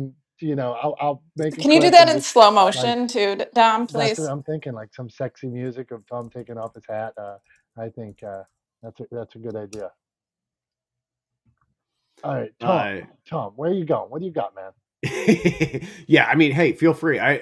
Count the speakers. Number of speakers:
3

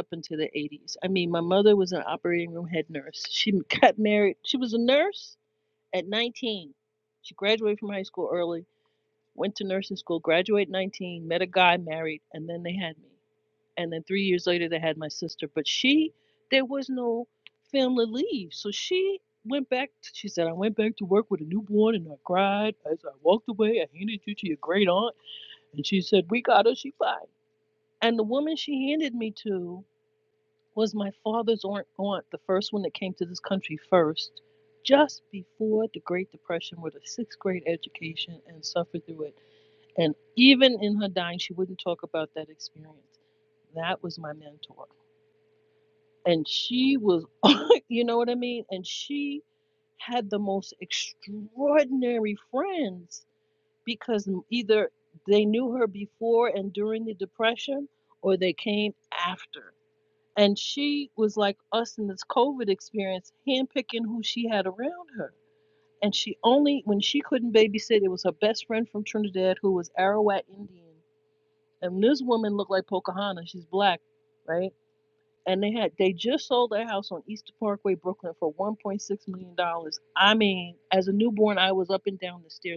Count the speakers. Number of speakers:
1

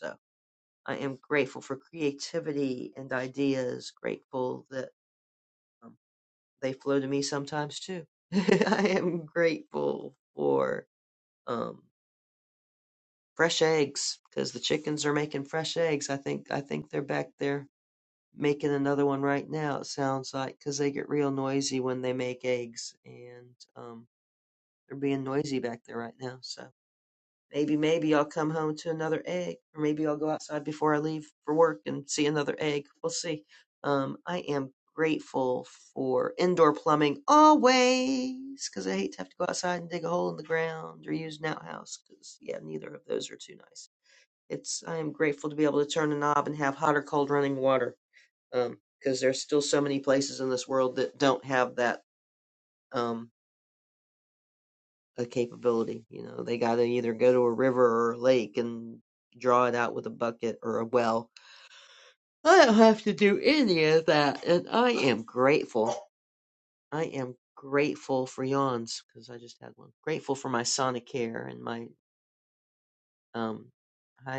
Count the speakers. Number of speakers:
1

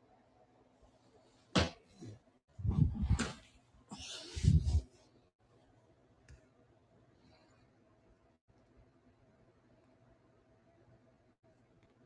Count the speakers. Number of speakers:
0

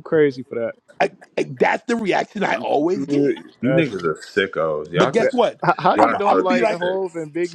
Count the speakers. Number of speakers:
3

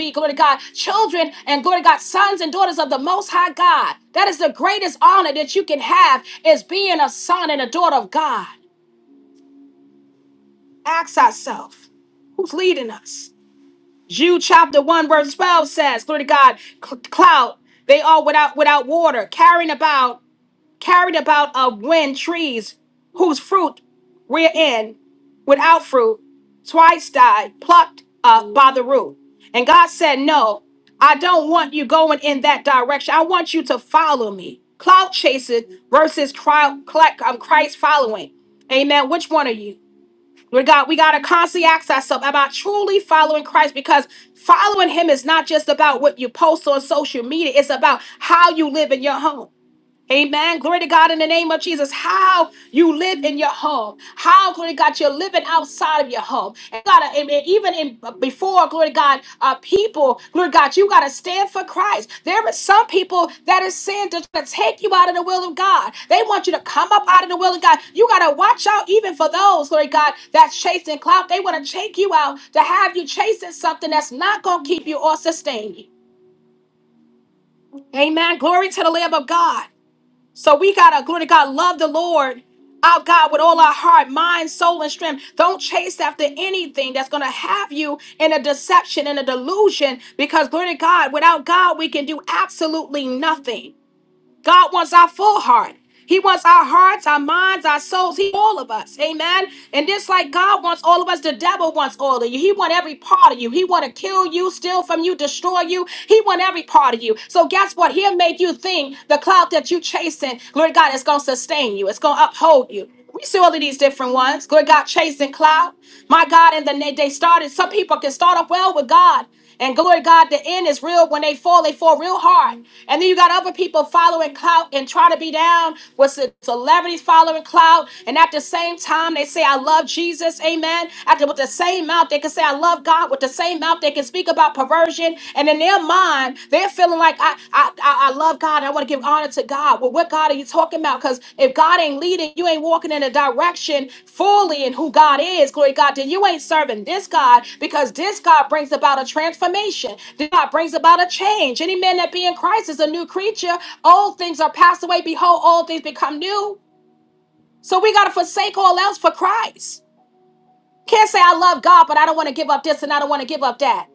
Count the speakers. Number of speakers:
1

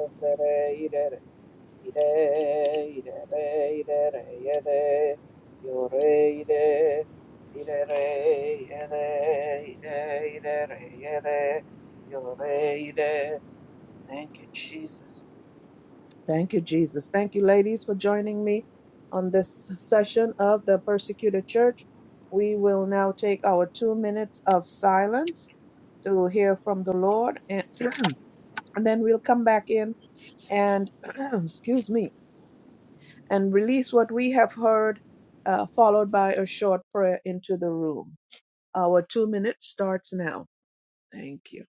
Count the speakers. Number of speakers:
1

